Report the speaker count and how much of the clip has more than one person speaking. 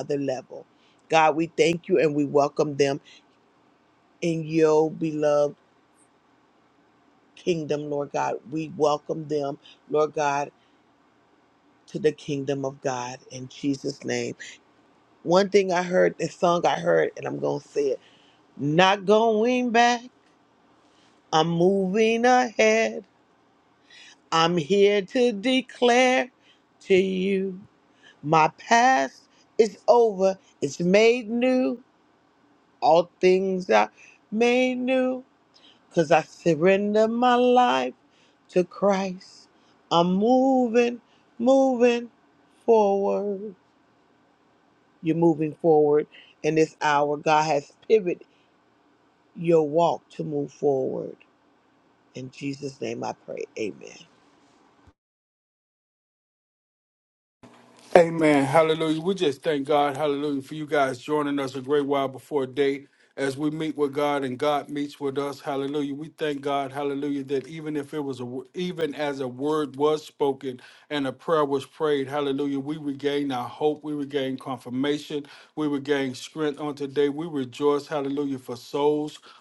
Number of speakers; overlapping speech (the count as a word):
two, no overlap